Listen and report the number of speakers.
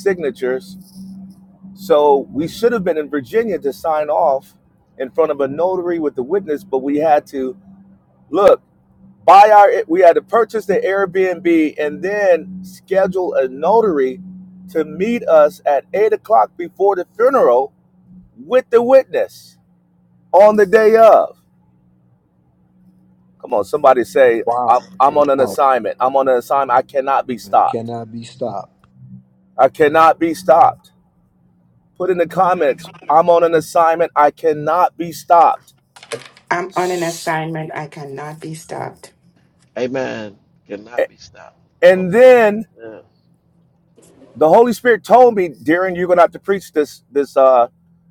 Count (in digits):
4